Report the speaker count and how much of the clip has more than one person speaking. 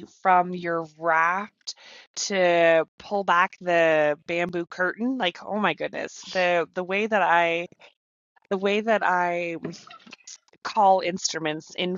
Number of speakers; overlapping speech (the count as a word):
one, no overlap